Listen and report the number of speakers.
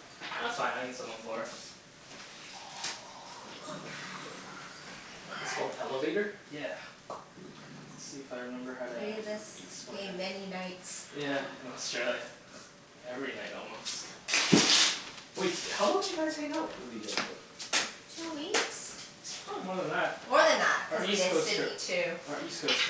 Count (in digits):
3